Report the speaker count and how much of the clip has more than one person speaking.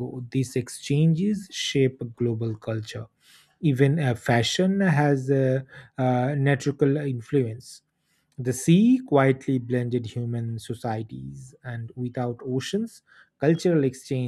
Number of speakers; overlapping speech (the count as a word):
one, no overlap